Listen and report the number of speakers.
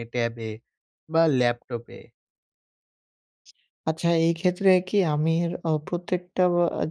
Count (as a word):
two